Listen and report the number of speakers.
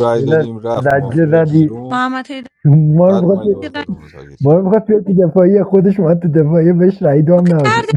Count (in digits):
3